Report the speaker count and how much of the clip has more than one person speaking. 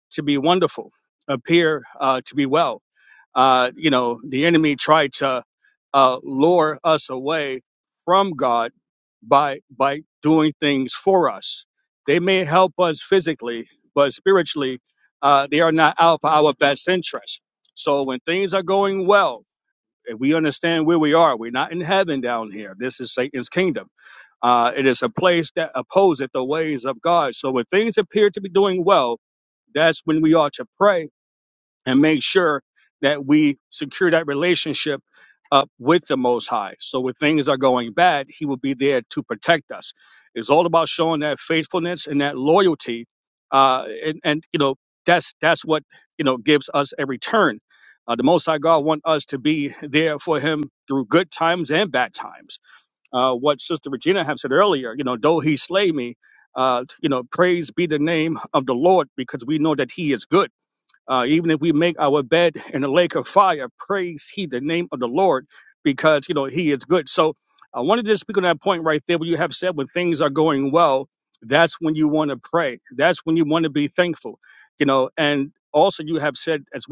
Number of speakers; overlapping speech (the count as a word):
one, no overlap